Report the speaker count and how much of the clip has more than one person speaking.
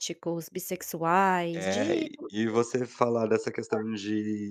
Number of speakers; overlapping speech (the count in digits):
2, about 12%